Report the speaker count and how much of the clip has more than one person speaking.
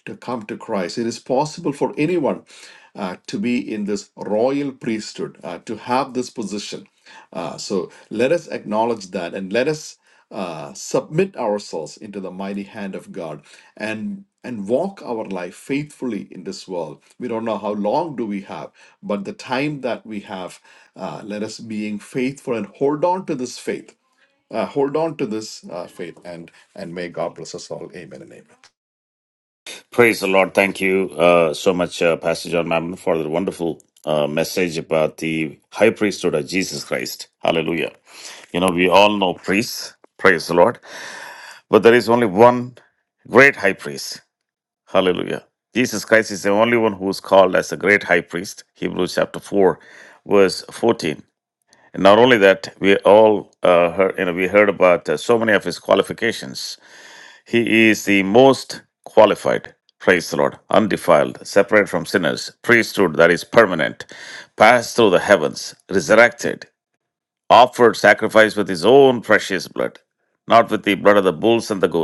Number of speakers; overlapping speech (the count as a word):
two, no overlap